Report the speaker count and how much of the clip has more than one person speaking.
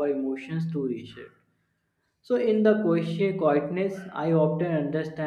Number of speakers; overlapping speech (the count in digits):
1, no overlap